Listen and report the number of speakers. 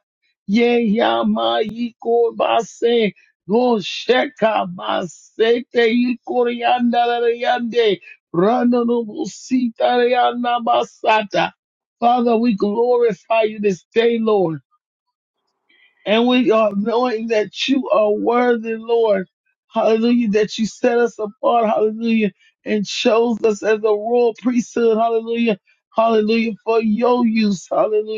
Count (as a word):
one